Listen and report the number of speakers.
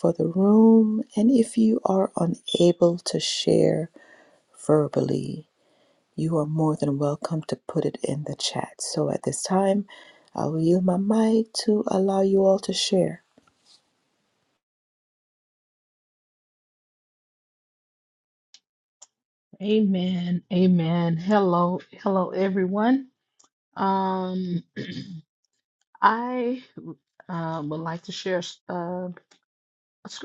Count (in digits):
2